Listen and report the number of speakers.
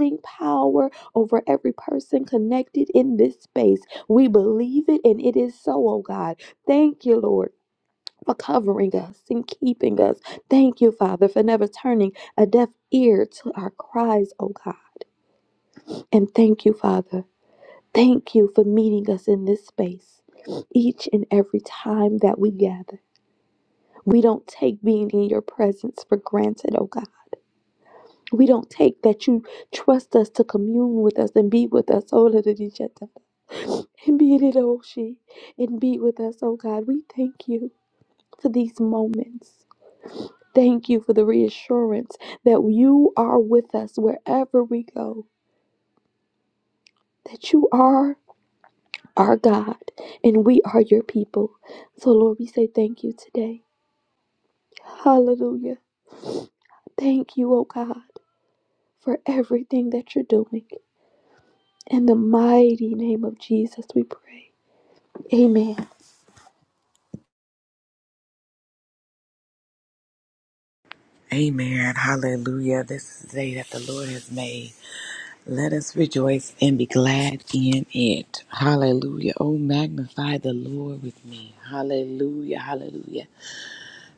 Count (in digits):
2